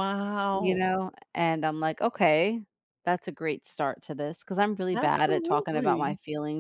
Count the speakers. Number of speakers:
2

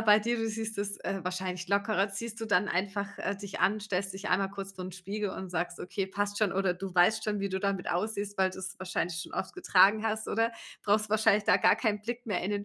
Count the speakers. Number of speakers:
1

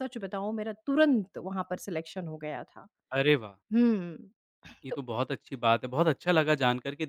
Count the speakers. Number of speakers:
2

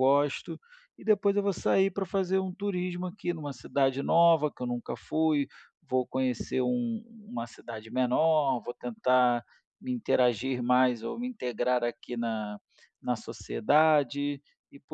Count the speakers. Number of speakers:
1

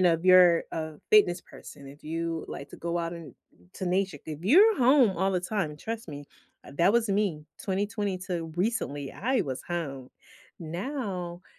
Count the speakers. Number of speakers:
1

